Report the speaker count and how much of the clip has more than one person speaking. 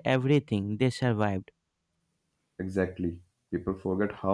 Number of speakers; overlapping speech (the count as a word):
two, no overlap